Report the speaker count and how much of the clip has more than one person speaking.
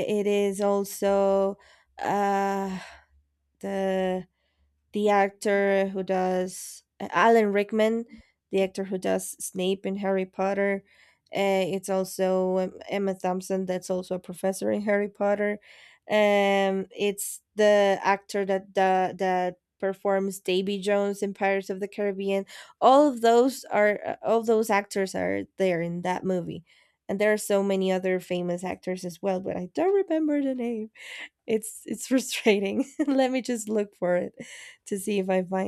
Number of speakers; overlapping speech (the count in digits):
1, no overlap